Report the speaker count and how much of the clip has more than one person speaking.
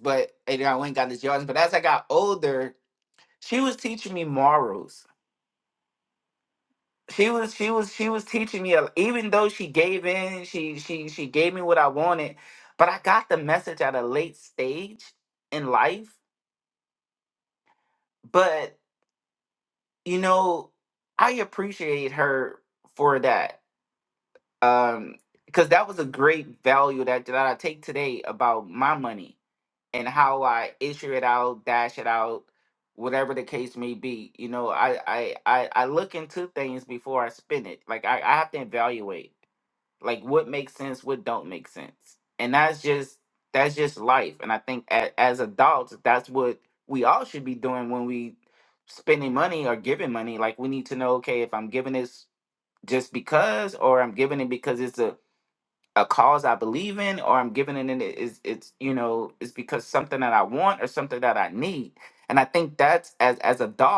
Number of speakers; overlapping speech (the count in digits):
1, no overlap